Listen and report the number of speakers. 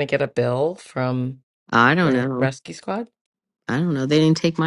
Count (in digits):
2